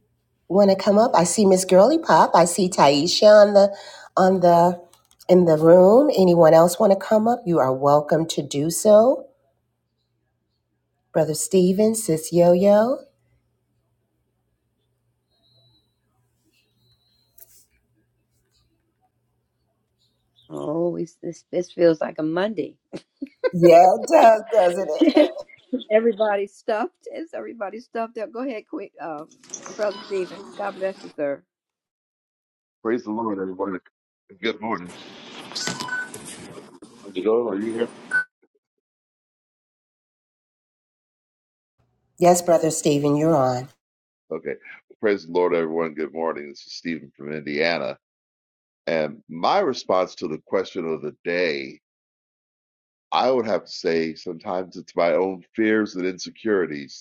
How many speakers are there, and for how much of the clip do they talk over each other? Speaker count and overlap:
three, no overlap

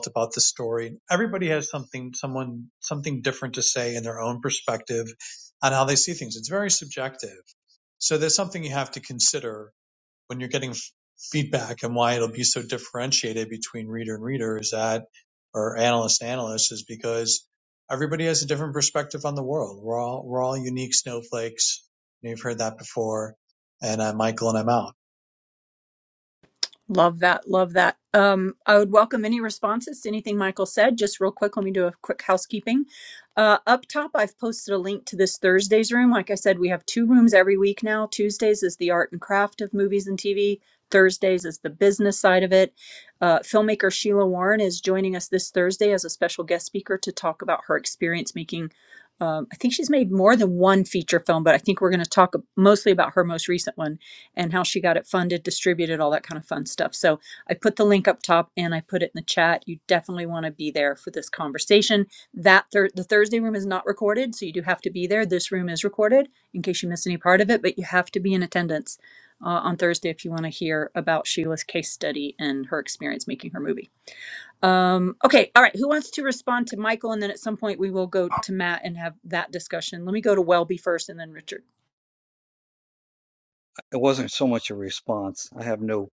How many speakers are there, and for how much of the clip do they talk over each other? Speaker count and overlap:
three, no overlap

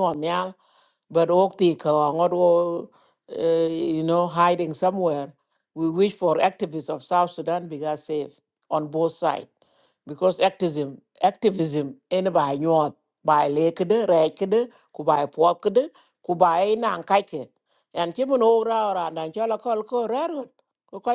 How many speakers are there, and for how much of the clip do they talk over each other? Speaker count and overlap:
one, no overlap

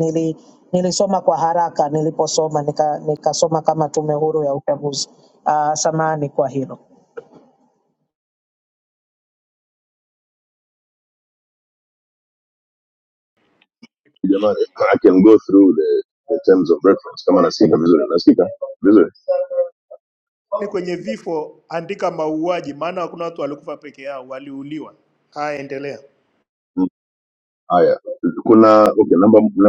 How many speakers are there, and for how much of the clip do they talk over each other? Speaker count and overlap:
three, no overlap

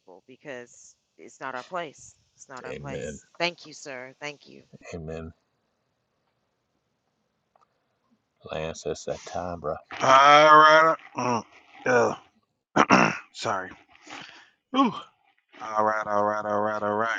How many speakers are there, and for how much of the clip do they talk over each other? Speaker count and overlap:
three, about 2%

